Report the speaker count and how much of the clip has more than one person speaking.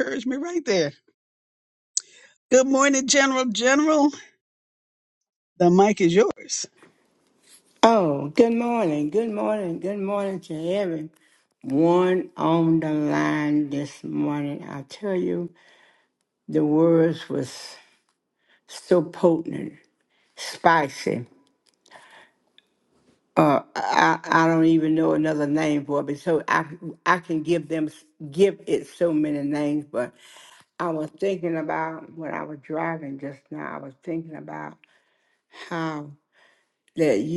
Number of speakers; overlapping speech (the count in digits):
2, no overlap